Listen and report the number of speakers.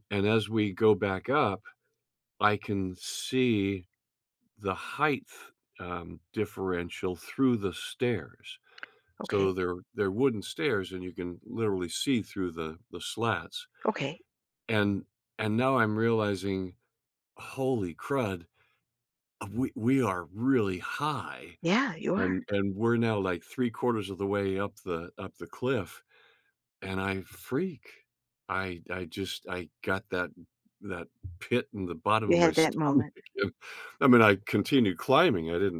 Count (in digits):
2